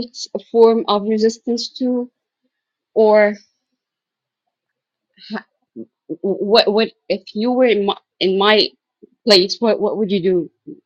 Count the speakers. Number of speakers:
one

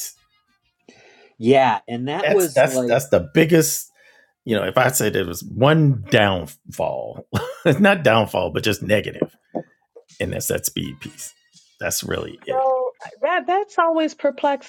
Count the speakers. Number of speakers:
three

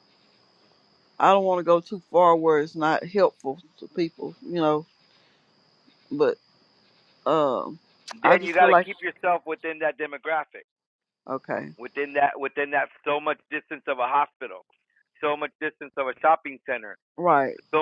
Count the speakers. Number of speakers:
two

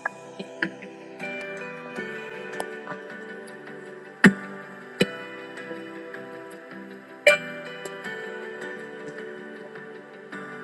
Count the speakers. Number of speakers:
zero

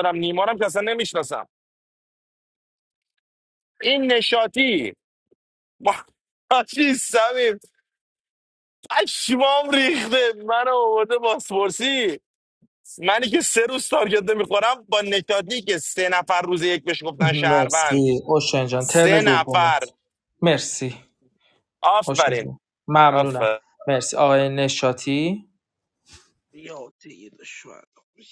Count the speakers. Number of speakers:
three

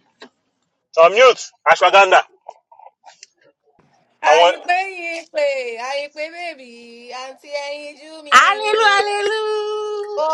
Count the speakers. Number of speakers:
three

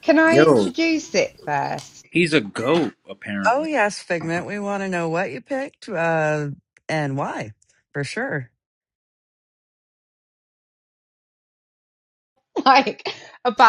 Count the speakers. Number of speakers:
three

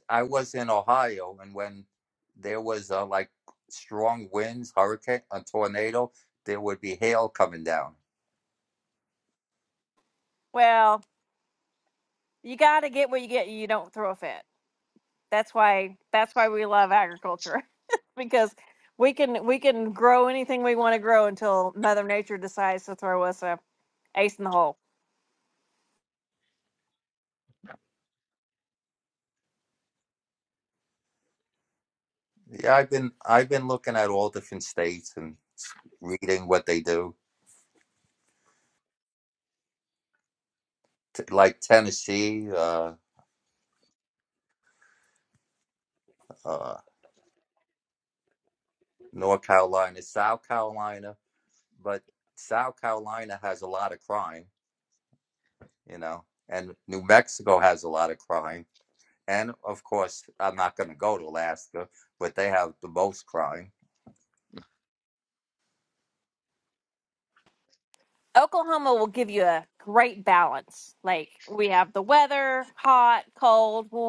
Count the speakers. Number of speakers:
two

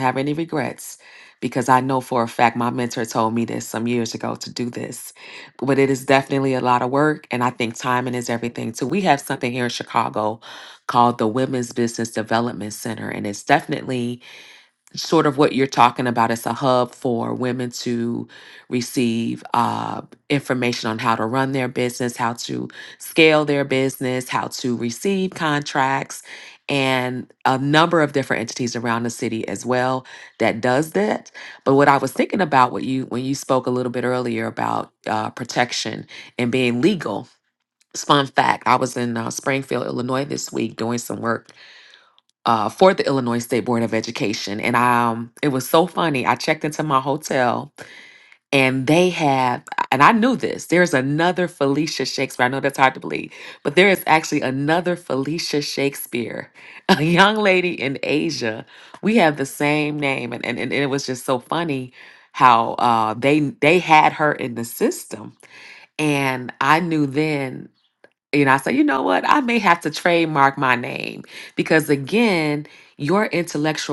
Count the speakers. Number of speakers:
one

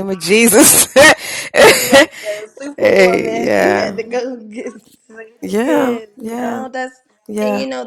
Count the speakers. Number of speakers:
two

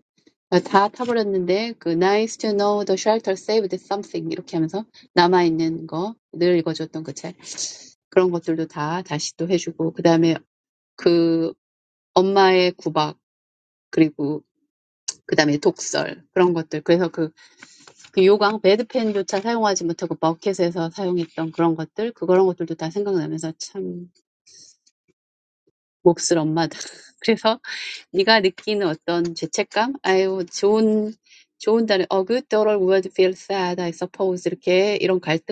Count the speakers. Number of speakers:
one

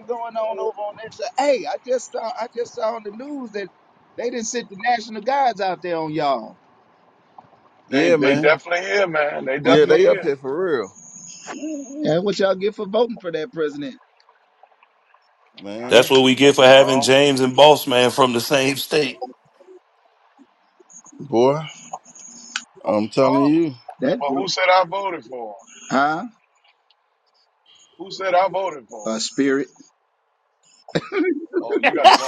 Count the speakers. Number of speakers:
four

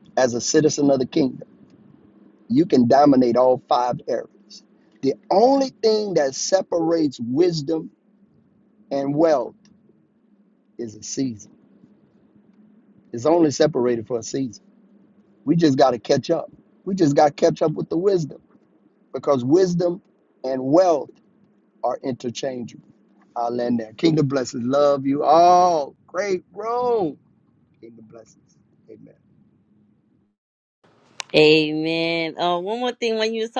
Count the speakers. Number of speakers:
two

